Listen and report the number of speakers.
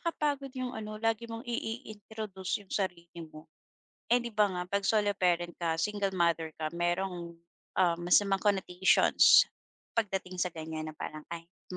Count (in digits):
1